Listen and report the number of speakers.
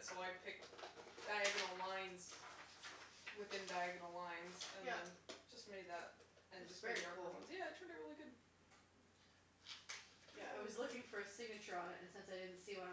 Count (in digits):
2